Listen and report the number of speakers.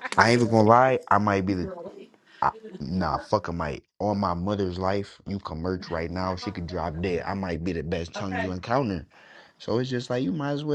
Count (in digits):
1